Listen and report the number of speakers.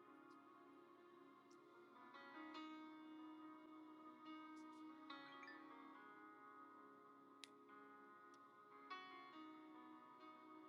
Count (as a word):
zero